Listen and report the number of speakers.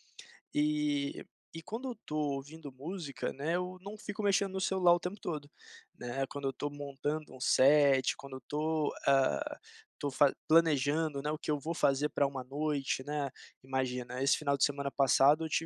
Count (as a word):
one